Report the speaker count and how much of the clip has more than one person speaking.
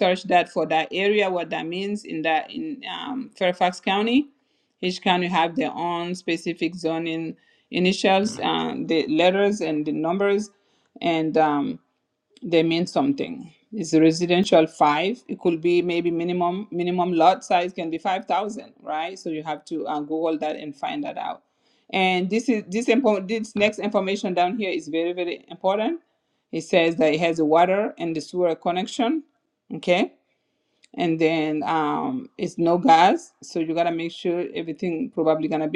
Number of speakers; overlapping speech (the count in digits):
1, no overlap